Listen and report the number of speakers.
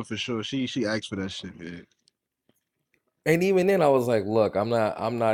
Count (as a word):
two